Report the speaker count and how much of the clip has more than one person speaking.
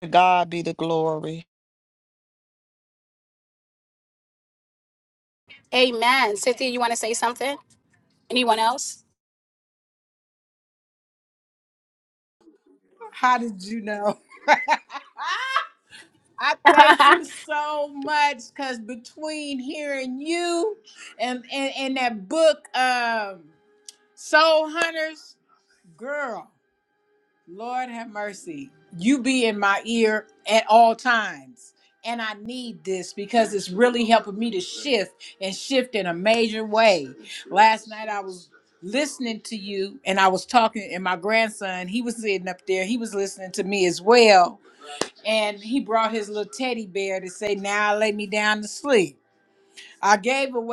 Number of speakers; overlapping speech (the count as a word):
three, no overlap